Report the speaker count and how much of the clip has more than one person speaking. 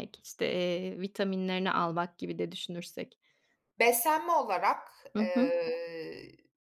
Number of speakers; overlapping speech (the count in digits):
2, about 6%